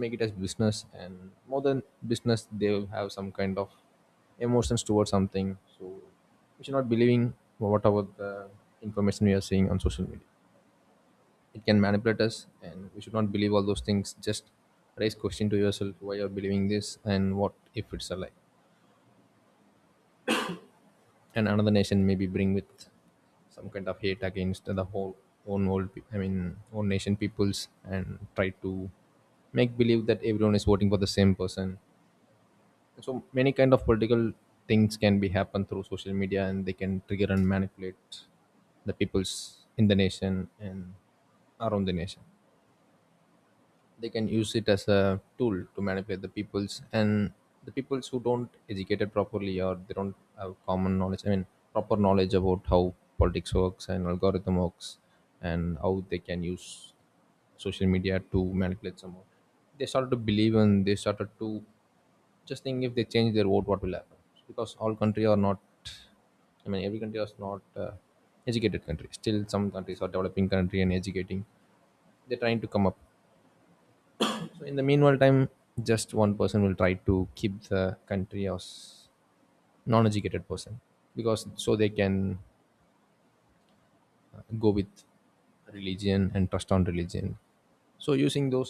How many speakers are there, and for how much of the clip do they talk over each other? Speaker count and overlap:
one, no overlap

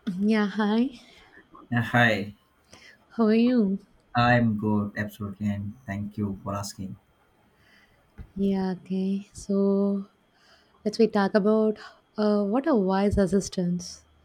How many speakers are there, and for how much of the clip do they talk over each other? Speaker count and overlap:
two, no overlap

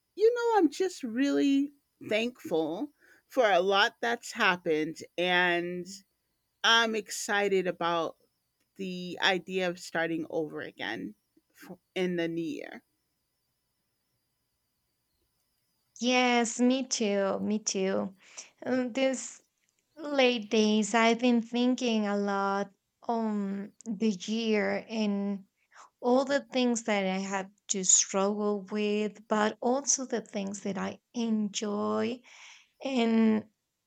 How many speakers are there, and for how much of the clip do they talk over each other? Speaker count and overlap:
two, no overlap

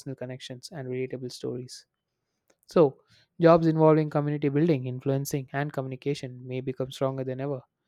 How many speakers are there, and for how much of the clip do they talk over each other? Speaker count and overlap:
one, no overlap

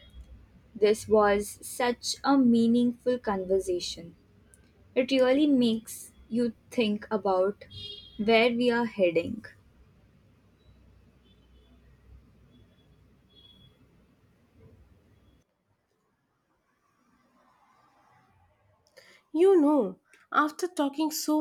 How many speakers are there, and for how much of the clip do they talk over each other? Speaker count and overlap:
two, no overlap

